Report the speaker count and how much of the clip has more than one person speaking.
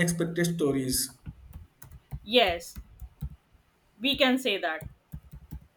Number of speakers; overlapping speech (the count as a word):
two, no overlap